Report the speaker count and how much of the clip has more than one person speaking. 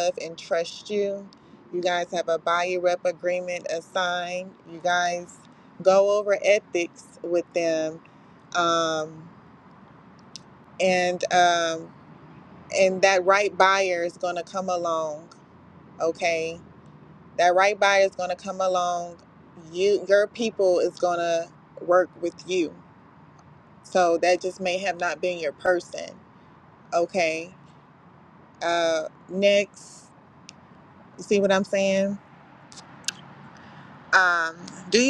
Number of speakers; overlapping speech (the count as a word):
one, no overlap